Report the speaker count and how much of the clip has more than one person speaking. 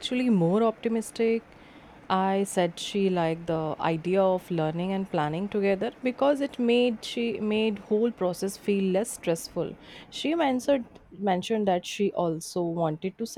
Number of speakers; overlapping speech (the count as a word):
one, no overlap